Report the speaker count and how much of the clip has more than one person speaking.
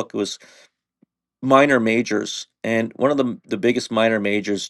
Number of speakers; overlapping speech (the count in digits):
1, no overlap